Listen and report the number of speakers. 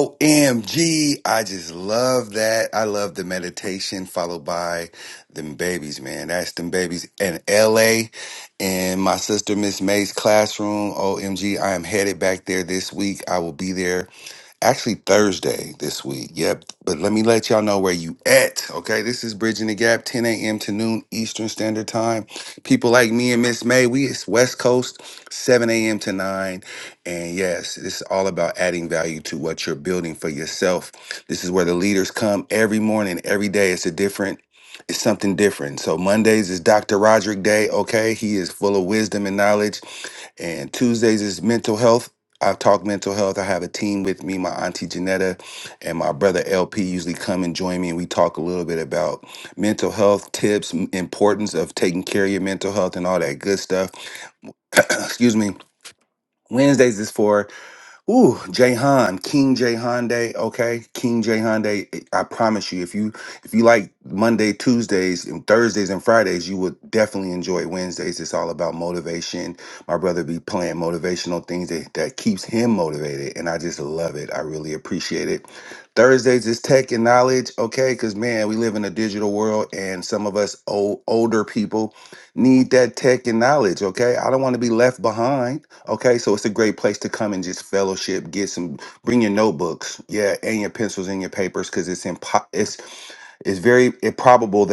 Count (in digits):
1